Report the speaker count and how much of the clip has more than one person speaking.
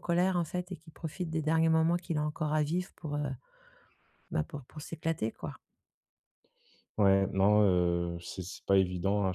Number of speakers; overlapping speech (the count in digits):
2, no overlap